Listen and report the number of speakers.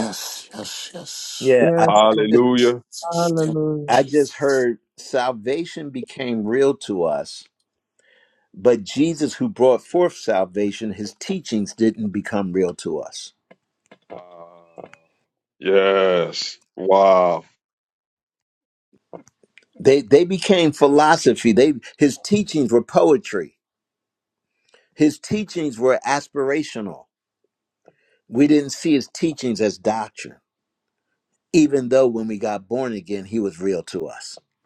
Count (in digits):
4